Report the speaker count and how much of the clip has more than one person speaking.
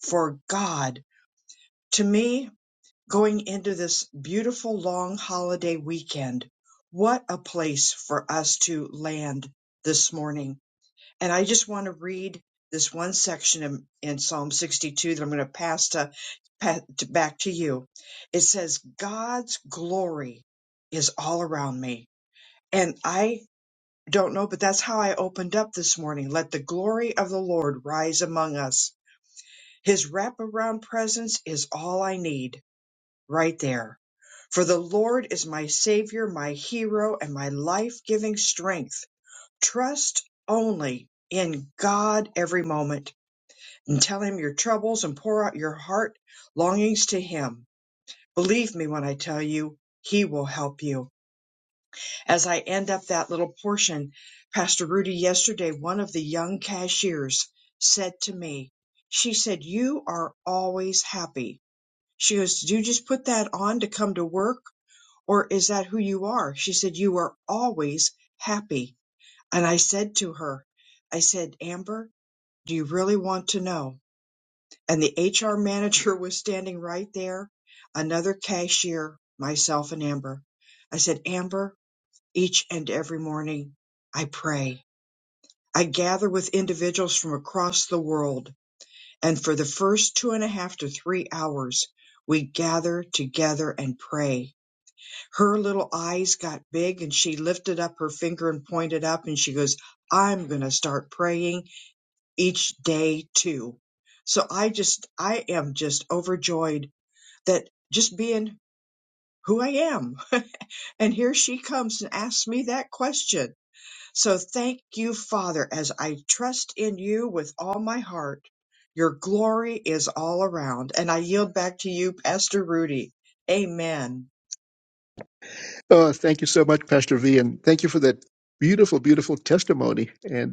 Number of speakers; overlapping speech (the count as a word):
two, no overlap